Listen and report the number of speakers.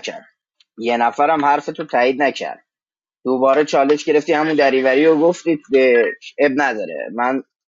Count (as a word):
one